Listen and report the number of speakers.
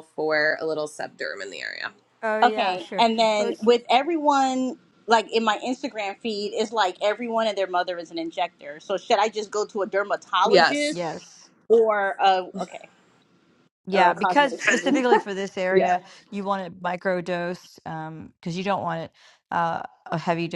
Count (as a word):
three